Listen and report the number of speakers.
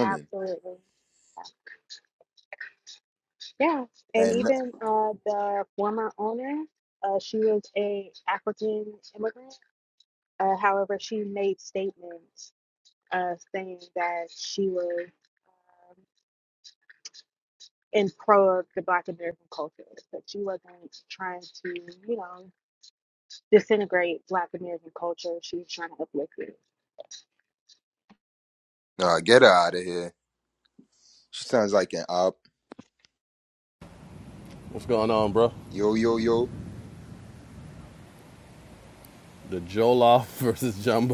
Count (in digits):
3